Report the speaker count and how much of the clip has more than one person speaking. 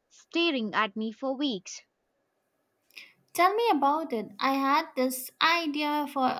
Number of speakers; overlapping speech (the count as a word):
two, no overlap